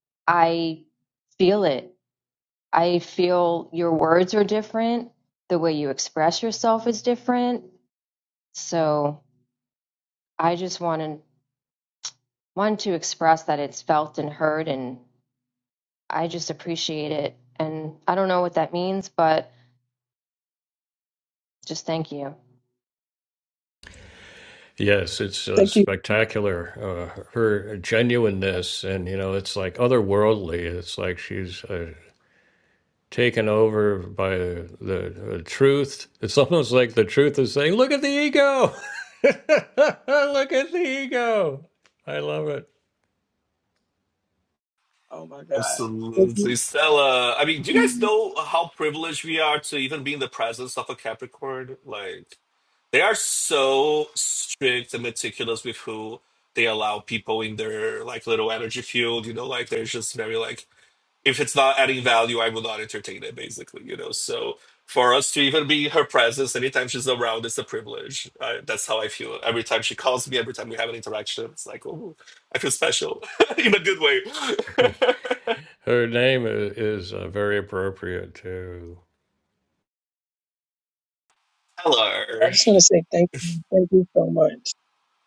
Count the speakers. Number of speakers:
four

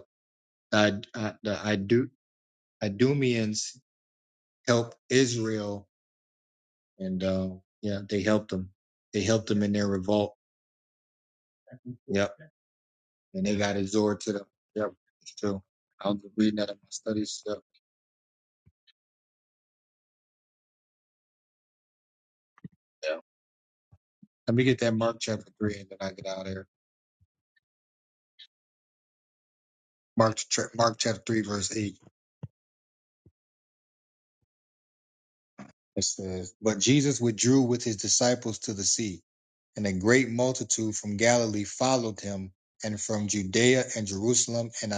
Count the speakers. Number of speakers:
one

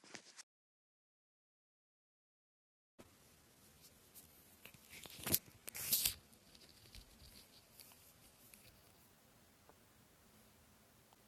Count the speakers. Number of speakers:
zero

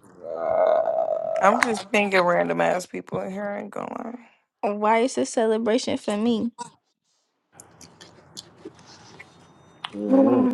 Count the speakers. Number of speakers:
three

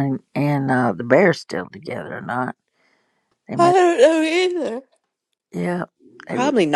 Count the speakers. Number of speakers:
two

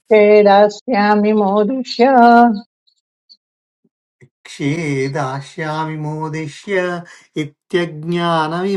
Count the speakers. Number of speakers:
two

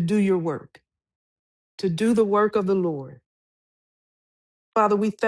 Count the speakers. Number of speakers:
one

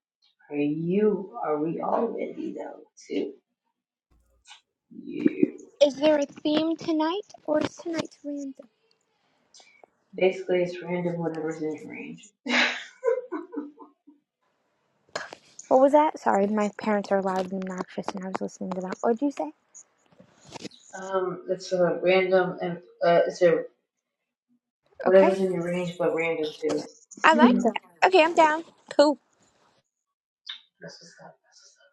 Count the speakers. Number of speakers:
two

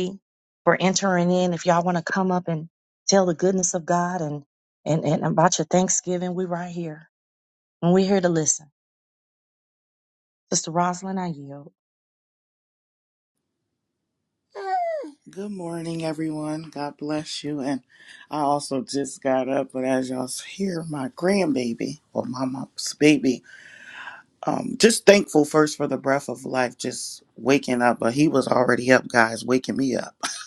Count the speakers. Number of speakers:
two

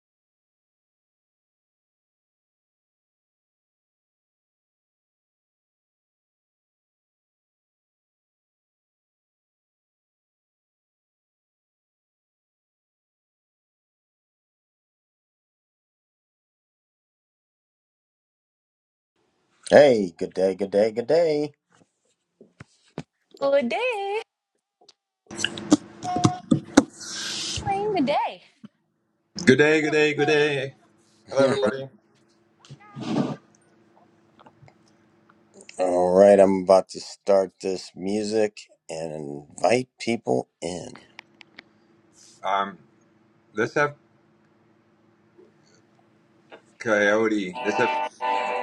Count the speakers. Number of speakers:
three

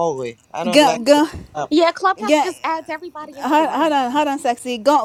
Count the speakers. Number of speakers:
three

